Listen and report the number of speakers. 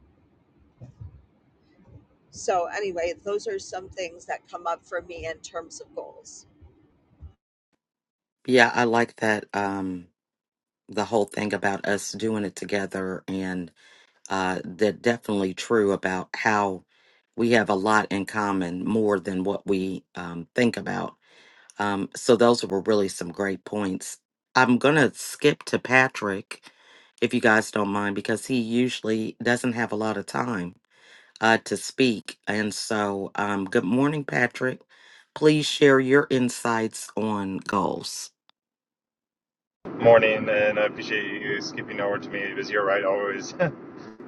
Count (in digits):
3